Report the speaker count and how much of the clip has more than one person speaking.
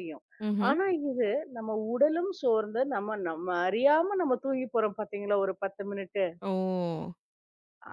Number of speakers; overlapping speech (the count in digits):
2, about 2%